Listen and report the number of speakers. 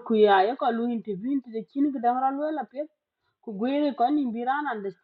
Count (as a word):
one